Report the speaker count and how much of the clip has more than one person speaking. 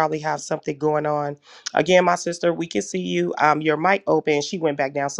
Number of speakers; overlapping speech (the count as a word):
one, no overlap